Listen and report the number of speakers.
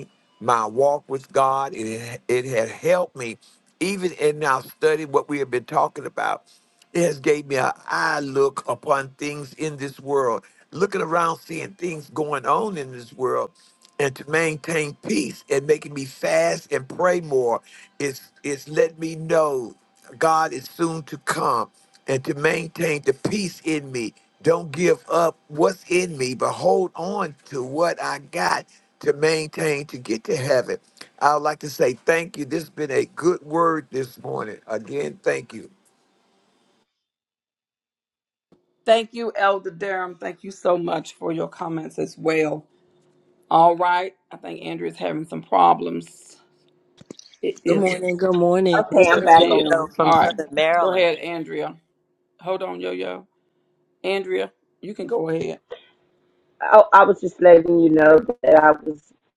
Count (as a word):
four